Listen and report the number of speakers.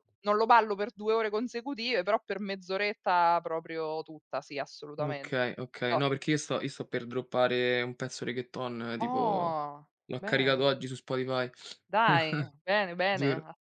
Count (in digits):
2